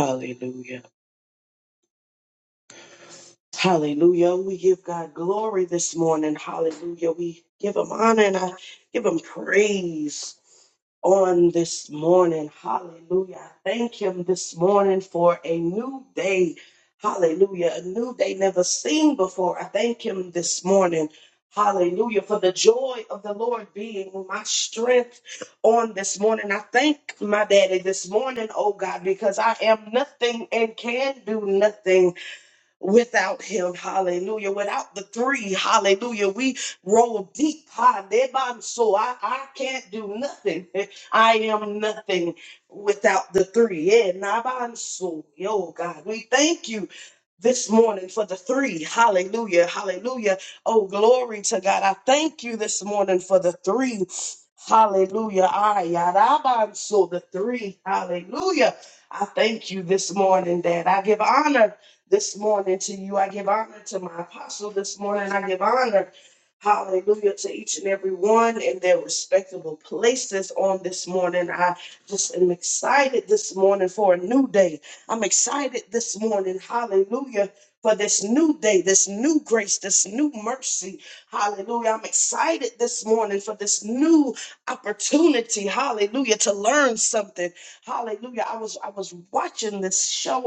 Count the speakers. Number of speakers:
1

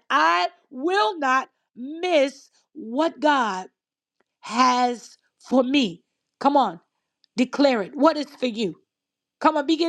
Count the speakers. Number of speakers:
1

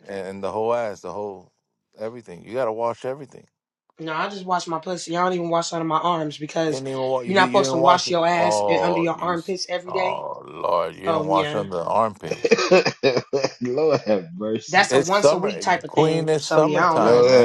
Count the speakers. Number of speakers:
3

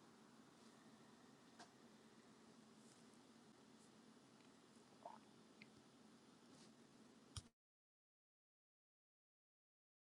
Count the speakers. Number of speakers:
0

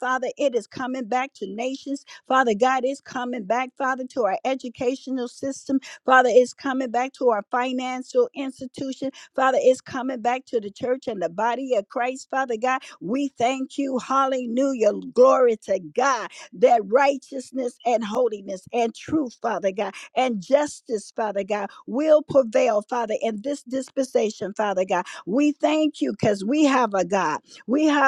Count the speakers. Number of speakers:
1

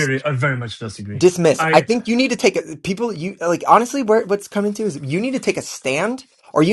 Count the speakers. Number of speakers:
2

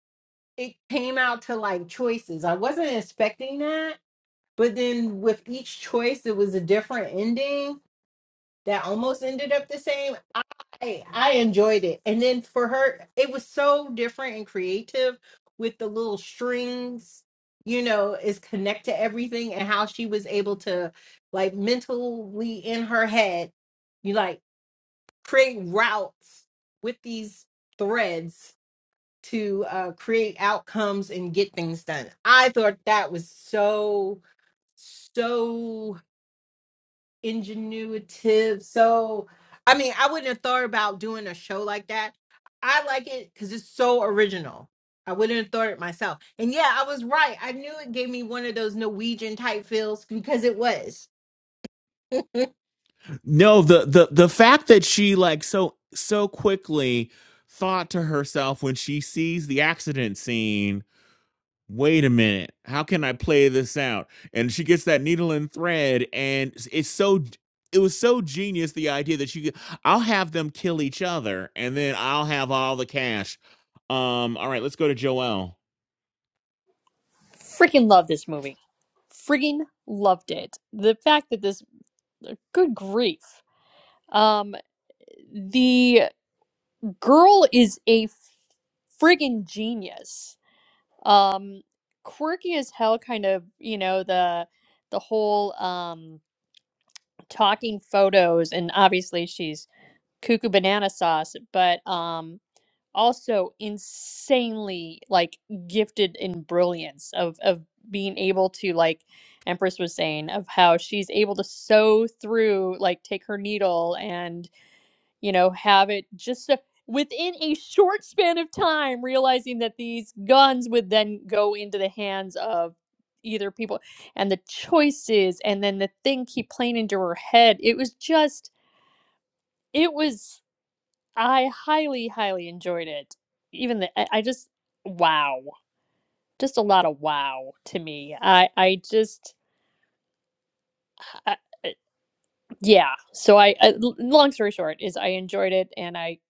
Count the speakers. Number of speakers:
3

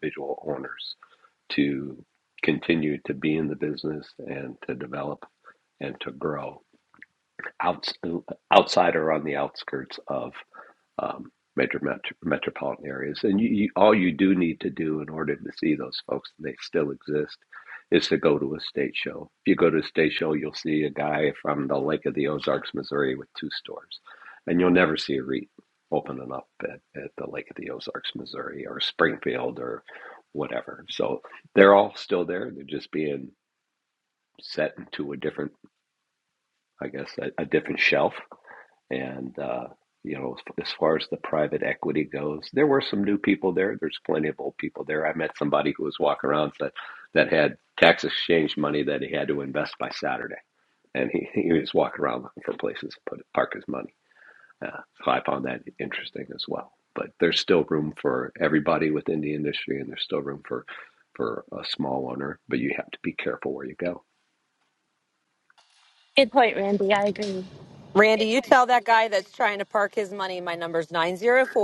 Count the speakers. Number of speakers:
3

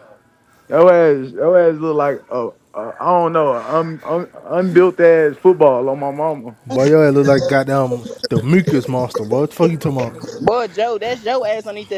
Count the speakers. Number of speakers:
3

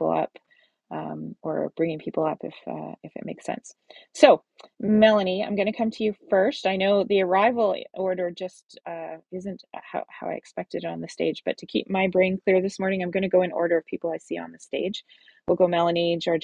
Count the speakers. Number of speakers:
1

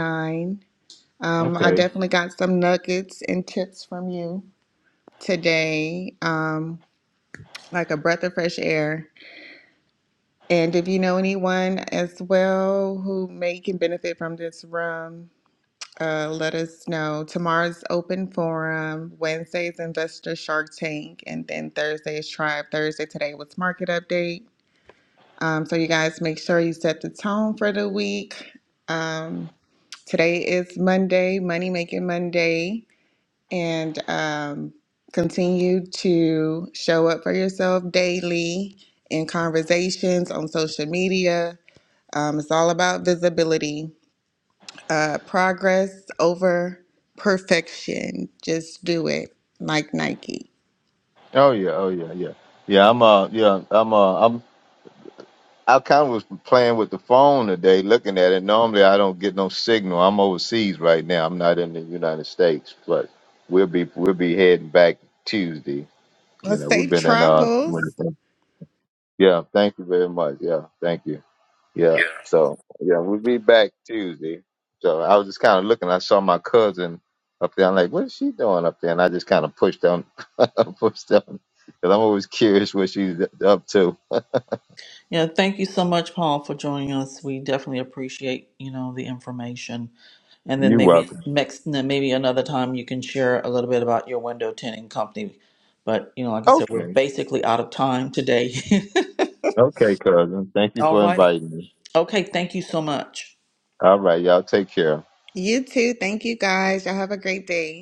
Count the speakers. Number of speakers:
3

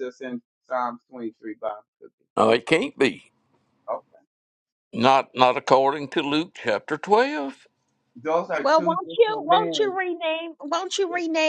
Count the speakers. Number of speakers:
3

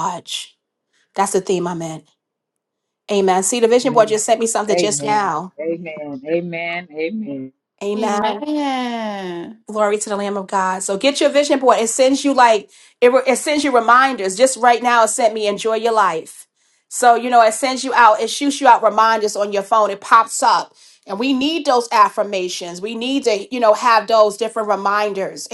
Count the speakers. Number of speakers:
3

